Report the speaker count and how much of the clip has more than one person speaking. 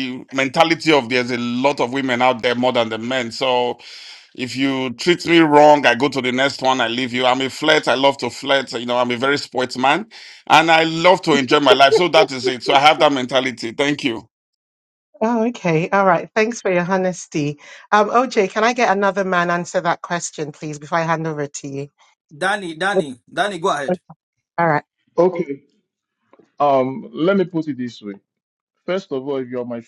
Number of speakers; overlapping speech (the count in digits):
4, under 1%